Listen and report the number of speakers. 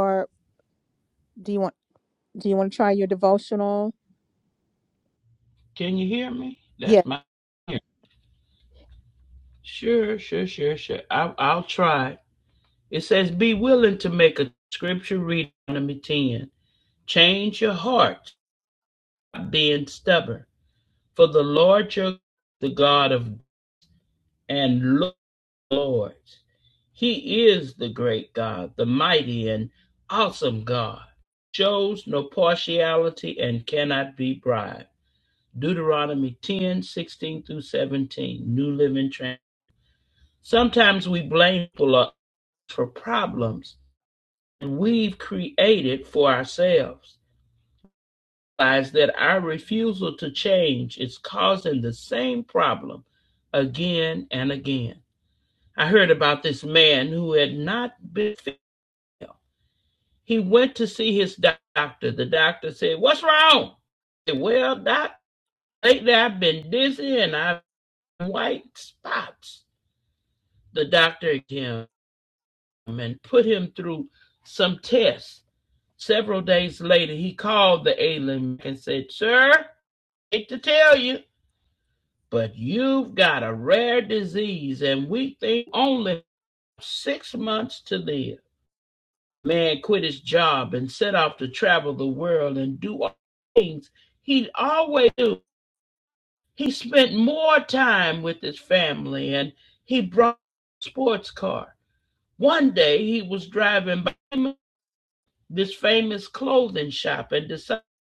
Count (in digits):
2